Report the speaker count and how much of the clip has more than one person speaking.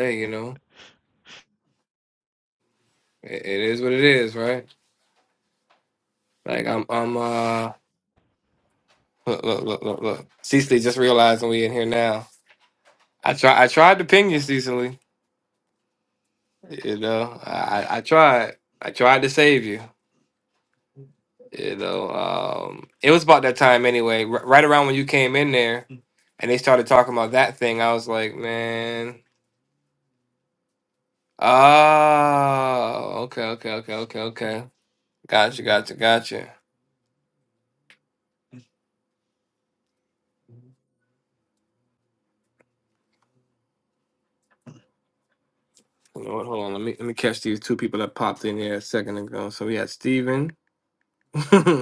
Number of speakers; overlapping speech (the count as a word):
one, no overlap